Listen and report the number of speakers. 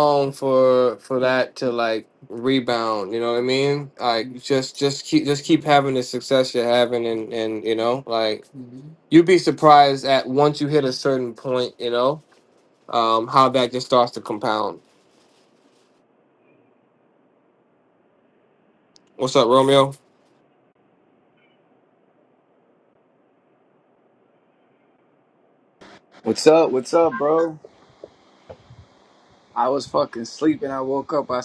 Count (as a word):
two